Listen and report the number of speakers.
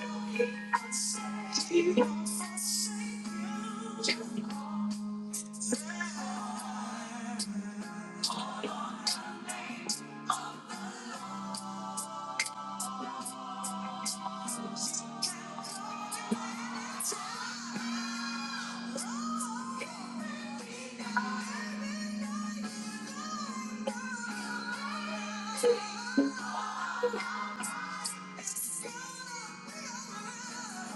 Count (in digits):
0